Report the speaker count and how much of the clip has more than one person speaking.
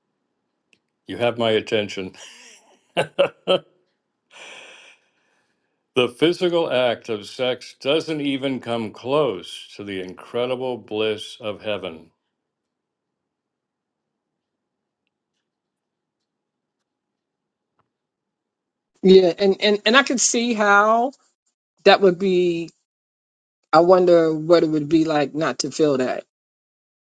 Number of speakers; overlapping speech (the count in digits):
2, no overlap